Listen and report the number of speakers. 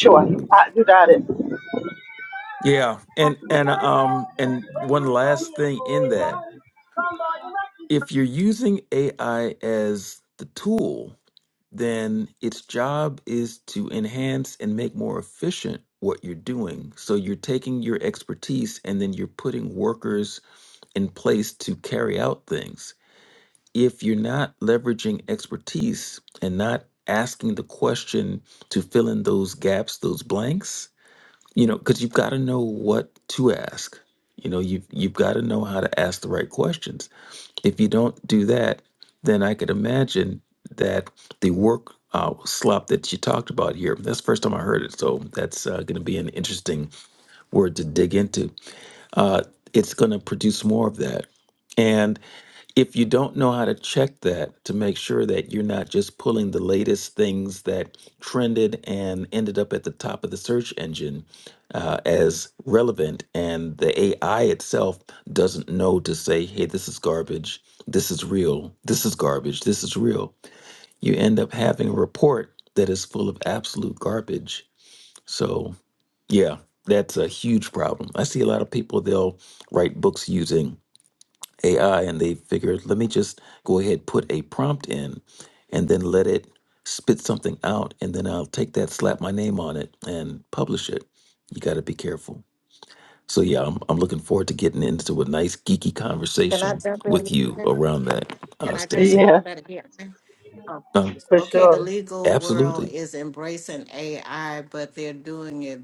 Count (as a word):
three